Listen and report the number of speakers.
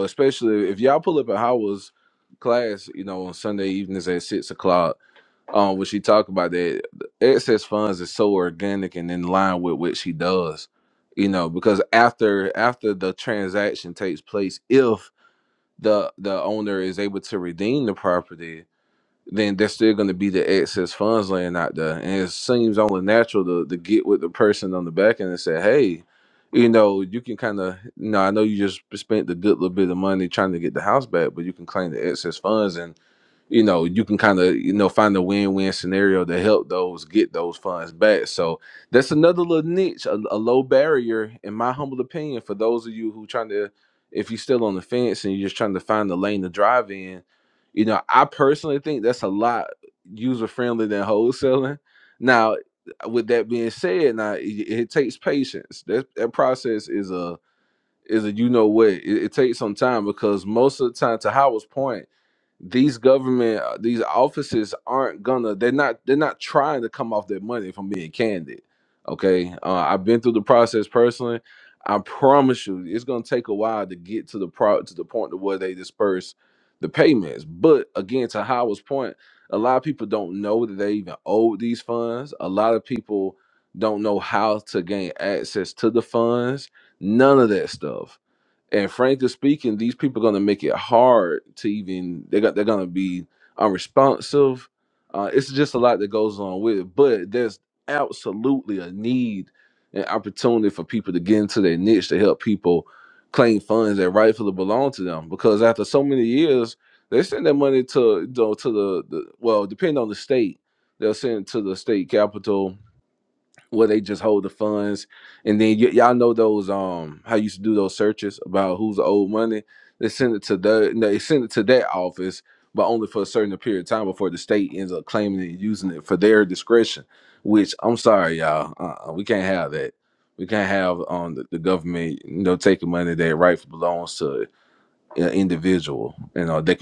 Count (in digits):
1